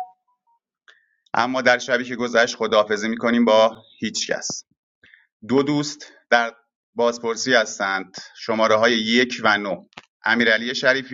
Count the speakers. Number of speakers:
1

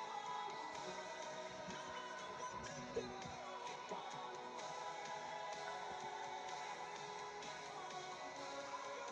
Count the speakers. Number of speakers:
0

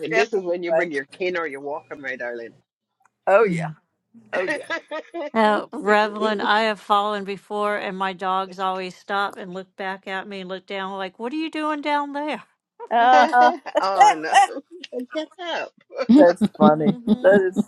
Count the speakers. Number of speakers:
3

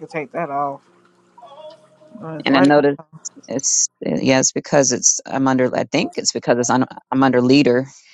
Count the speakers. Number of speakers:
2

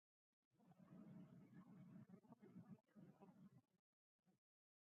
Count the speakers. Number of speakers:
0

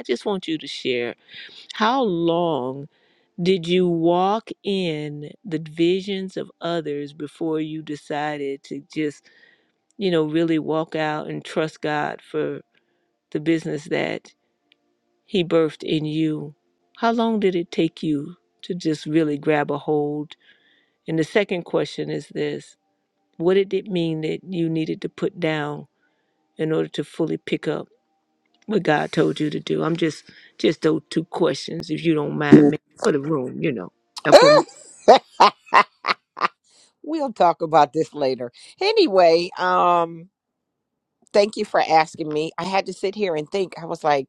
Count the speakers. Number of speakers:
2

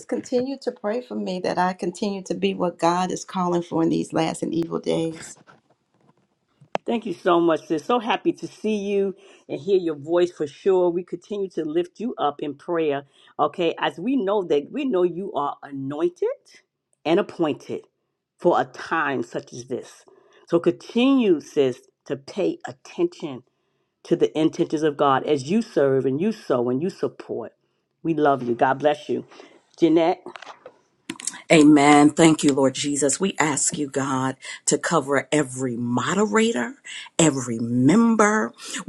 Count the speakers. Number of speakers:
3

